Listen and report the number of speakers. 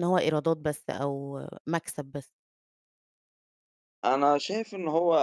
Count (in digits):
2